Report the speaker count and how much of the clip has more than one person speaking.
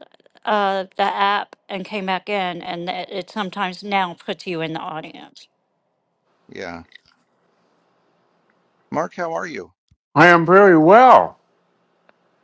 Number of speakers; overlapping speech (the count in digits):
3, no overlap